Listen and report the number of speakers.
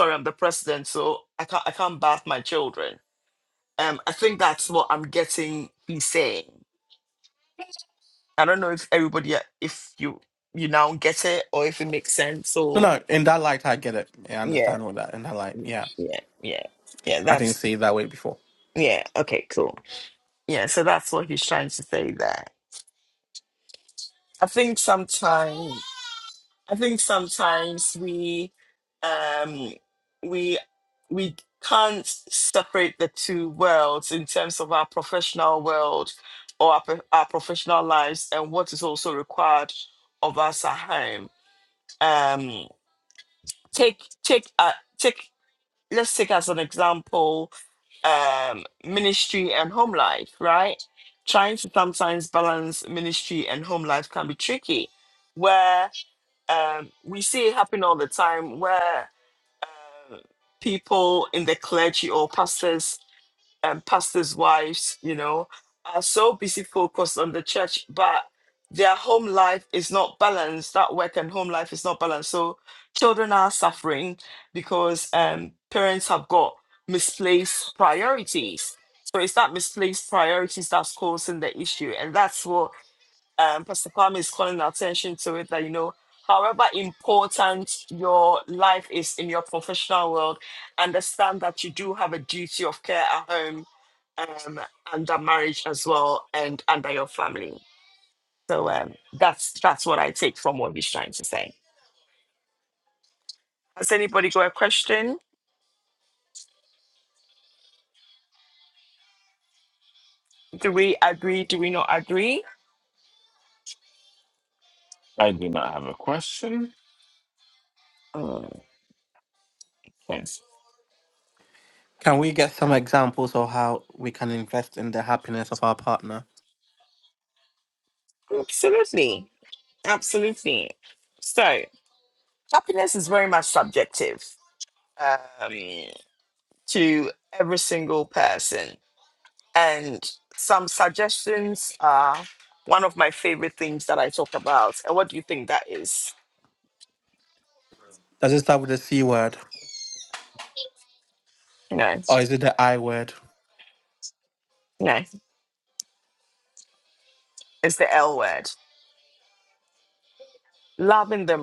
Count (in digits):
3